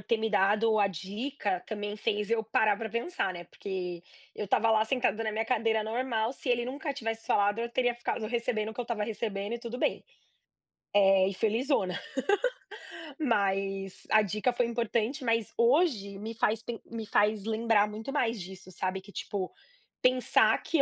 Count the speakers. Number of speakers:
1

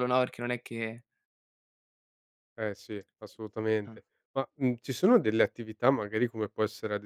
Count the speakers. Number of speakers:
2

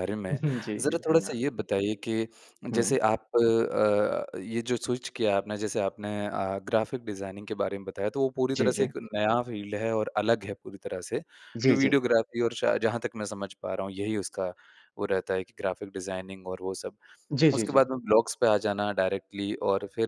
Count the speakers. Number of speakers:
2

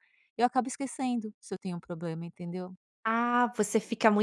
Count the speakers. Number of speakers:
2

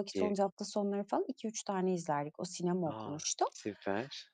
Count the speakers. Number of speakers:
2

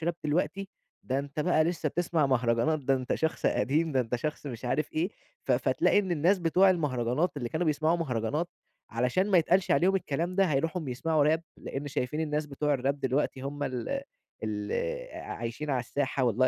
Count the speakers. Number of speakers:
1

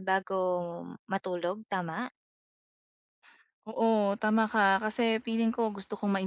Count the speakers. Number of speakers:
2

